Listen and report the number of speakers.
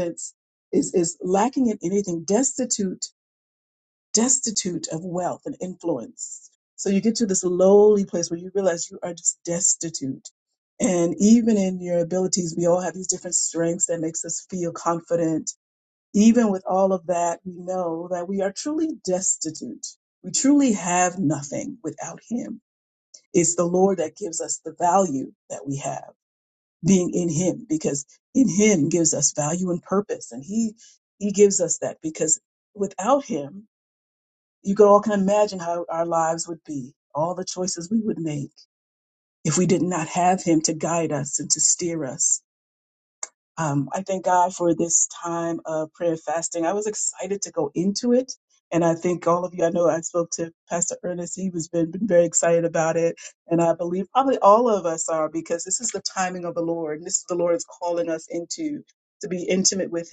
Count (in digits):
1